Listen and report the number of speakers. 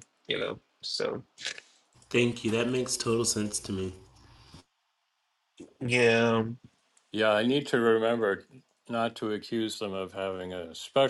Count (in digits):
3